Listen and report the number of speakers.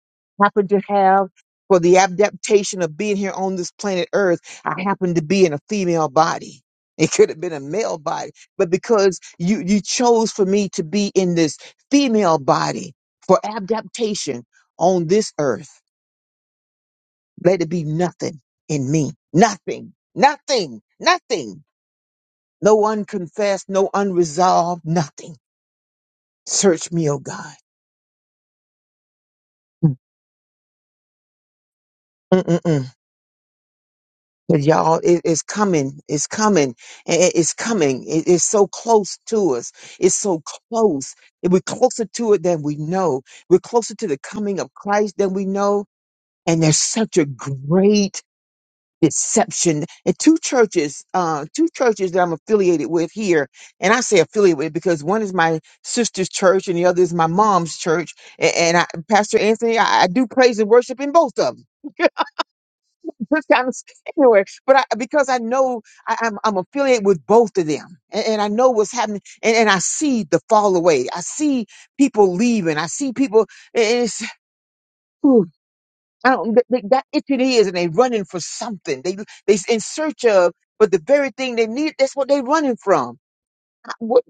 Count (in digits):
1